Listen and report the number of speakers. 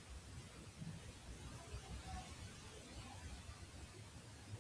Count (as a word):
zero